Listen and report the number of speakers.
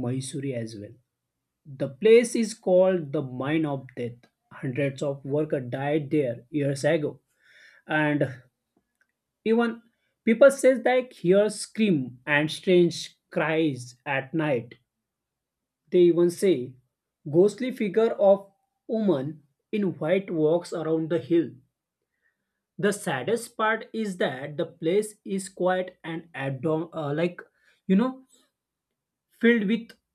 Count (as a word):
one